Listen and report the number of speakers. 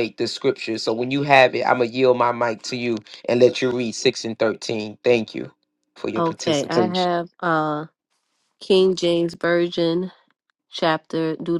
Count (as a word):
two